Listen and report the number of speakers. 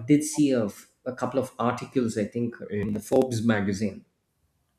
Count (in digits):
1